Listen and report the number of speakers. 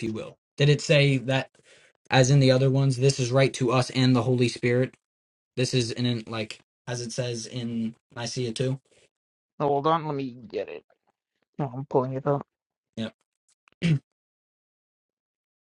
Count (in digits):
2